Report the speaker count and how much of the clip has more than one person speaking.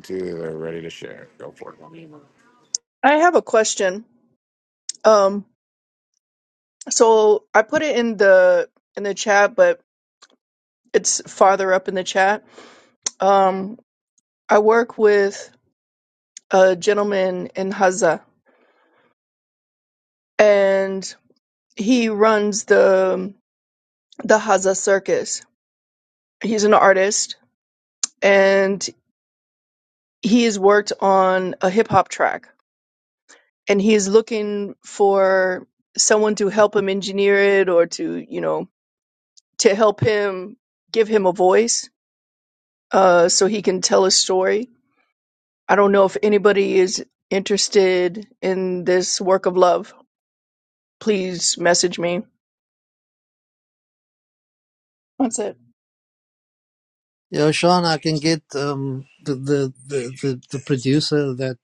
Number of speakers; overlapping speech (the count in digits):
3, no overlap